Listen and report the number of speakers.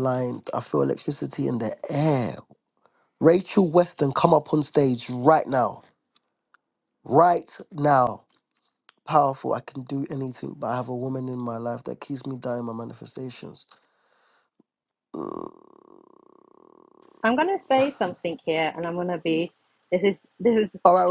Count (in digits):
2